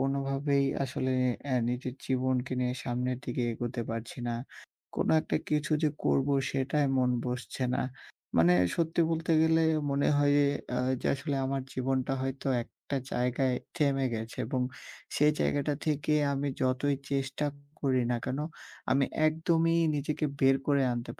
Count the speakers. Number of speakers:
one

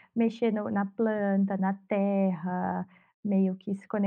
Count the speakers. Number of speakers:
one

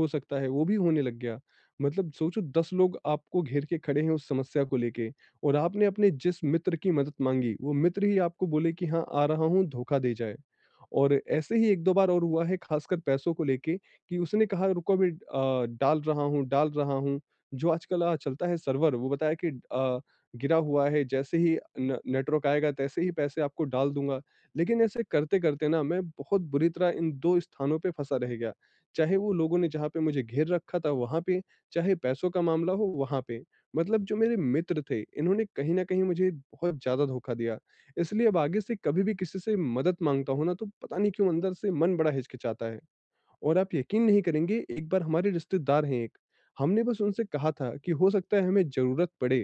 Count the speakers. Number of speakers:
one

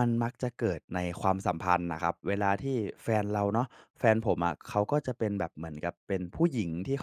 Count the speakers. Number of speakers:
one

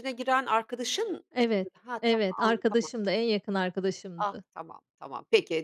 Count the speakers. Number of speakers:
two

